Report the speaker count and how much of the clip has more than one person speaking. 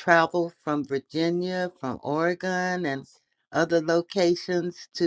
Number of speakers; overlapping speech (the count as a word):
one, no overlap